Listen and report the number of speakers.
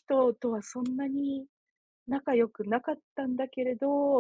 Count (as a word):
one